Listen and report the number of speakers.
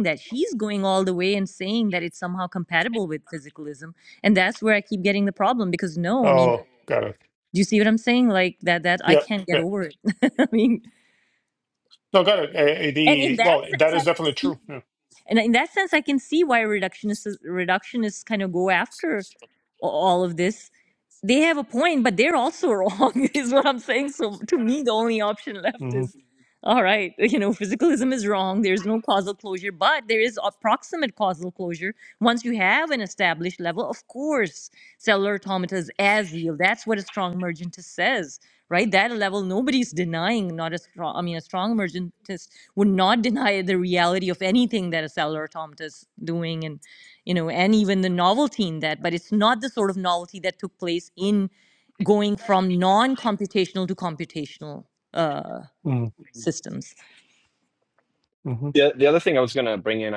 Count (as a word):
three